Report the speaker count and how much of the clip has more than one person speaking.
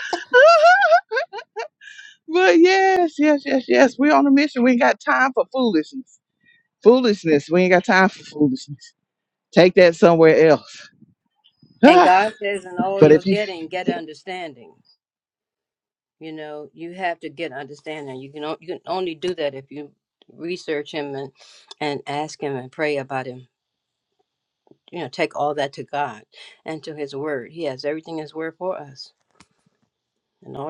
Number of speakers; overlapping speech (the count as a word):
two, about 3%